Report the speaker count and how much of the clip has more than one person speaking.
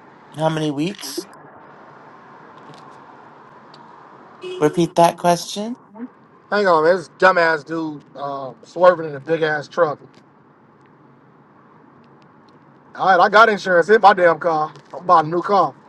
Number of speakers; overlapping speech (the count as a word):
two, no overlap